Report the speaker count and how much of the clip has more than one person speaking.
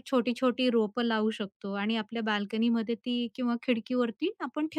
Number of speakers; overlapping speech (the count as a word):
one, no overlap